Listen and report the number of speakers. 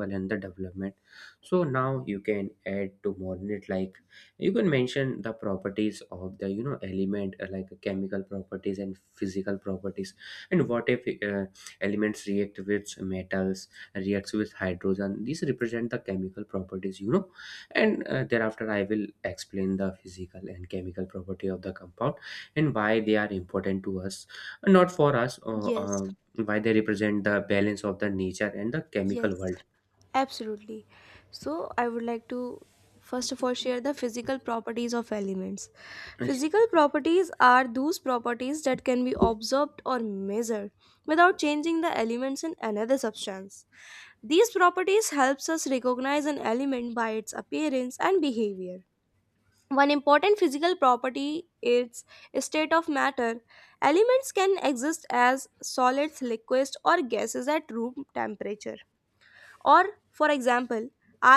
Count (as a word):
two